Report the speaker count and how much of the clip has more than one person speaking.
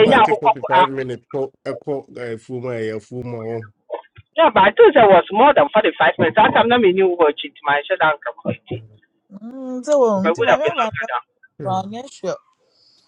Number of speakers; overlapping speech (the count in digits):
3, about 9%